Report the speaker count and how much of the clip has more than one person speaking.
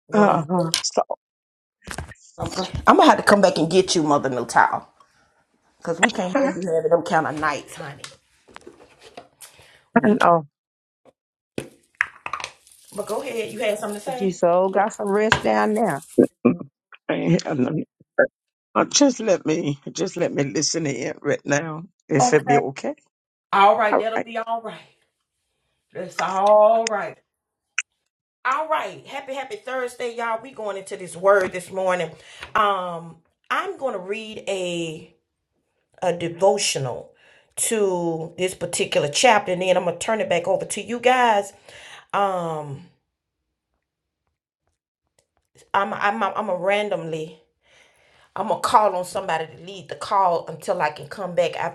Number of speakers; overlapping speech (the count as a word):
three, about 4%